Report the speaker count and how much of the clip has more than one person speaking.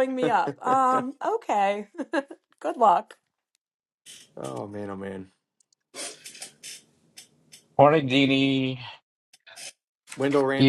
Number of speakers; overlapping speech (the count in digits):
3, about 1%